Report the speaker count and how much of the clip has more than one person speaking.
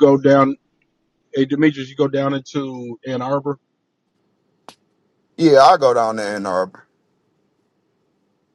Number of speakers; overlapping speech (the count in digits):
2, no overlap